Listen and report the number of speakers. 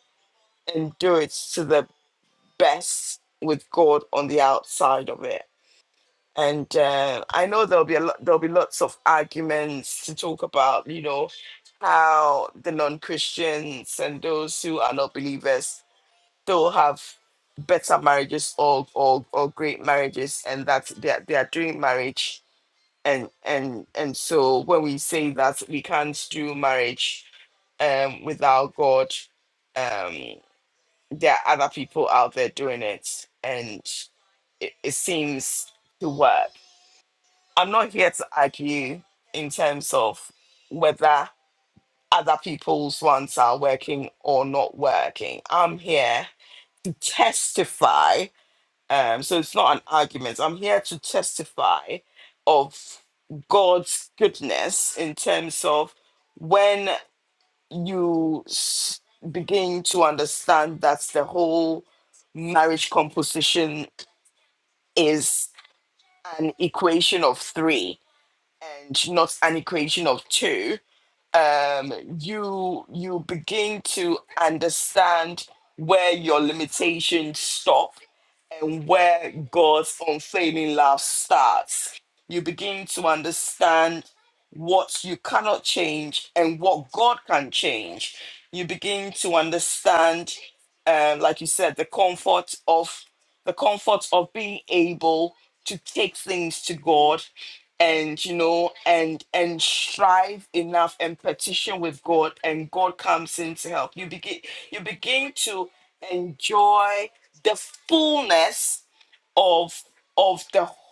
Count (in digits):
1